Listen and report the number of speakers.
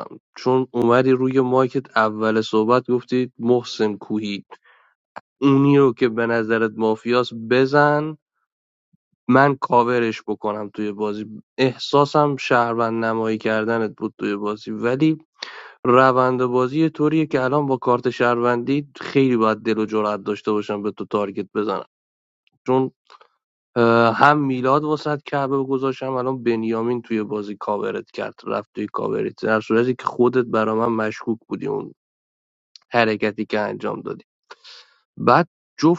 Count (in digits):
1